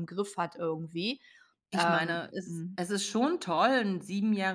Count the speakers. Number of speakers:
2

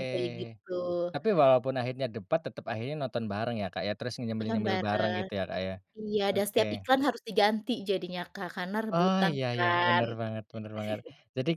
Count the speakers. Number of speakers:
2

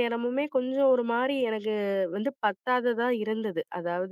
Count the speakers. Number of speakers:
1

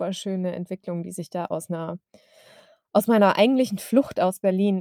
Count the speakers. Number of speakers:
1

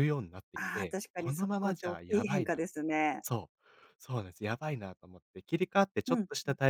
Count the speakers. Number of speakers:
2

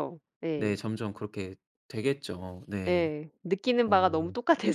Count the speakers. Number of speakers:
2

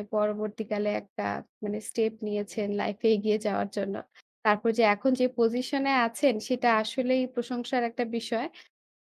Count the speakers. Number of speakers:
1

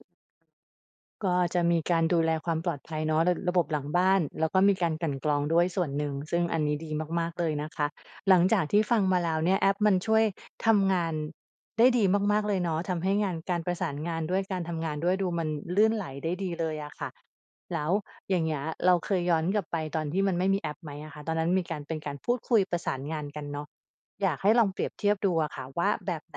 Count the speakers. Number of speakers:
1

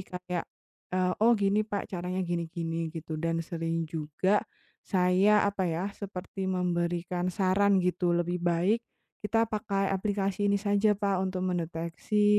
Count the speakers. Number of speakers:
1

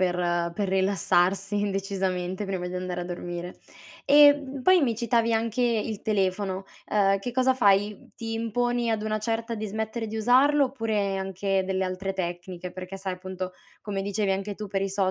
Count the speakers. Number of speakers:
1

